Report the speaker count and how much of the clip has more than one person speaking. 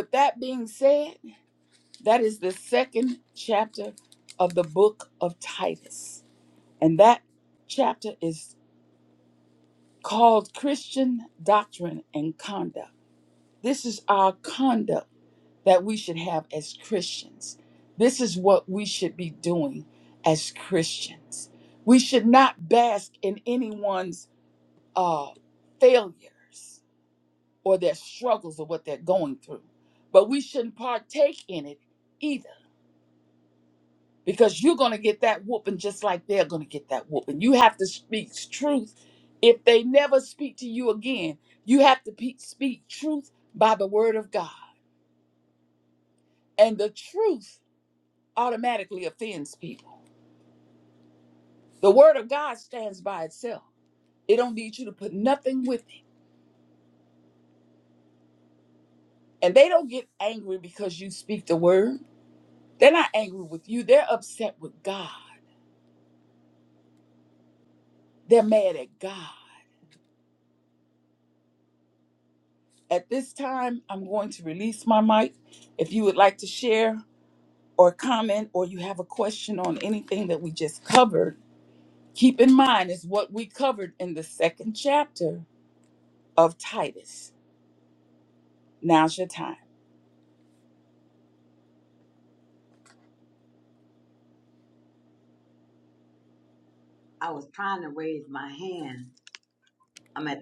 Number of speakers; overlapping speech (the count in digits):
2, no overlap